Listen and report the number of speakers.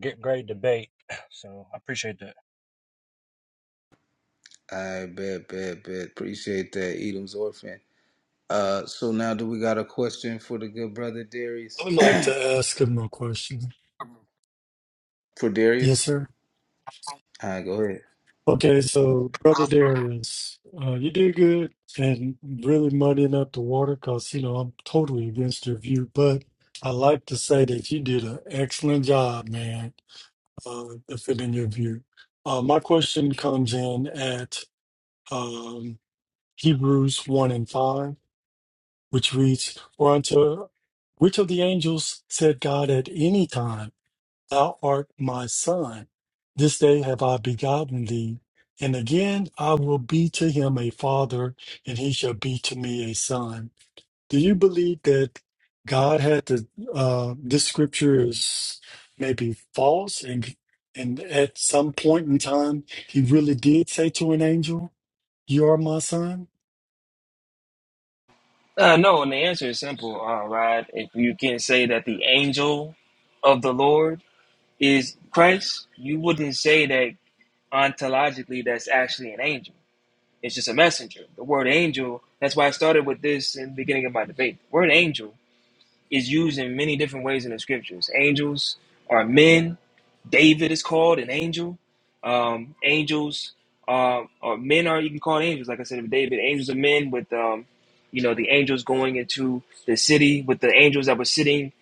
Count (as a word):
four